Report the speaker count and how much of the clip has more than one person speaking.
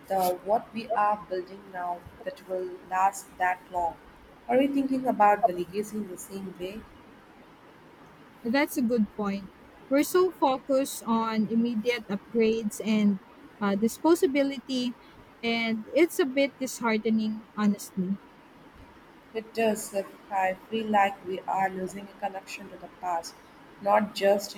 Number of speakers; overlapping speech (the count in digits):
2, no overlap